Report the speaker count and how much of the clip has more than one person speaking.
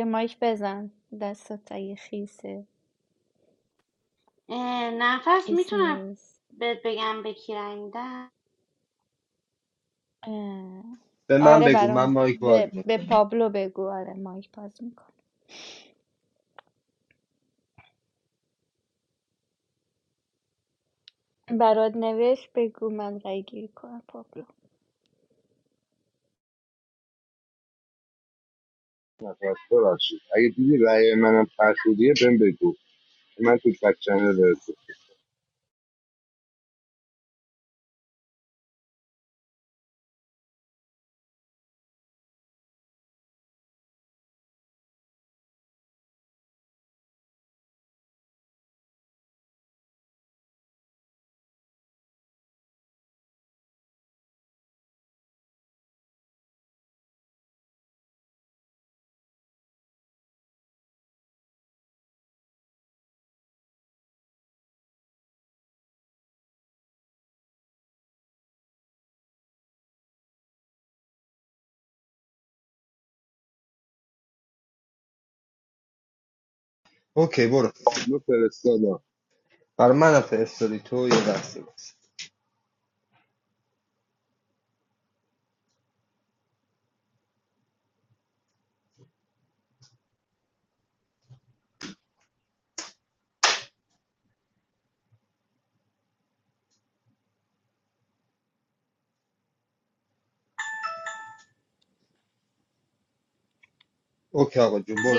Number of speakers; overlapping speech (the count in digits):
4, about 2%